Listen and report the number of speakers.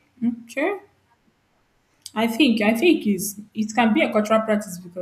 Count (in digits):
1